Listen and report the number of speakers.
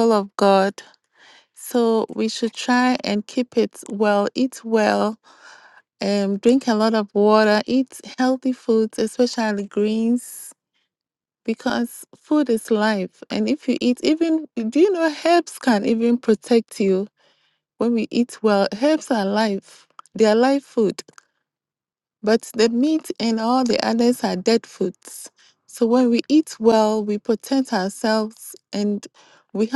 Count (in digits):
1